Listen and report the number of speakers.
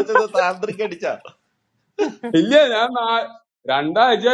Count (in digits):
2